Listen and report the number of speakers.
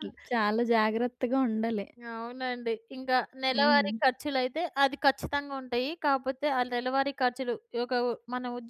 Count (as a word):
two